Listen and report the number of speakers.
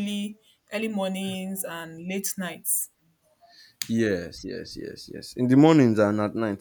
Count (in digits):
2